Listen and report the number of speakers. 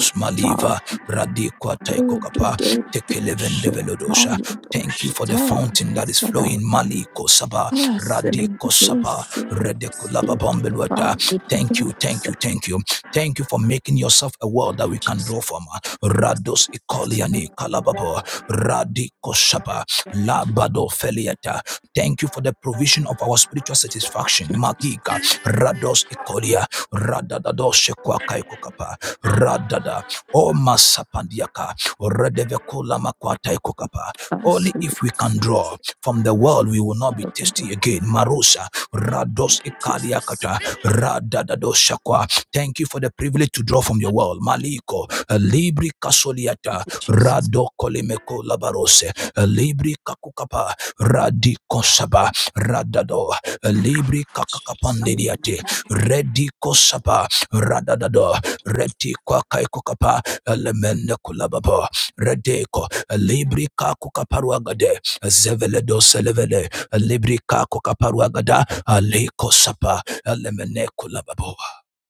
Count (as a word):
two